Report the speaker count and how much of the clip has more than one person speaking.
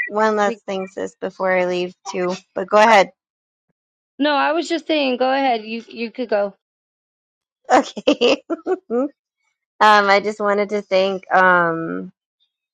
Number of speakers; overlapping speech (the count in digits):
2, about 1%